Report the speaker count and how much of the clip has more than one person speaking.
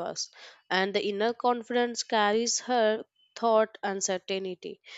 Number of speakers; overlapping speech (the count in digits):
1, no overlap